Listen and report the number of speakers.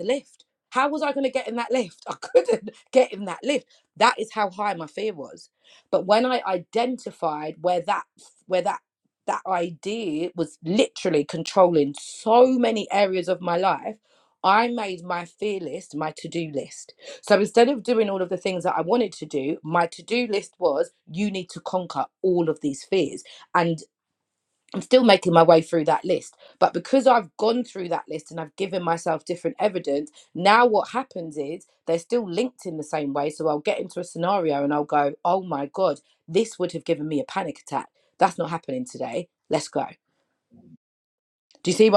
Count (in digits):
1